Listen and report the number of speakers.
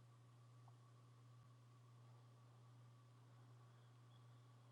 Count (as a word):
zero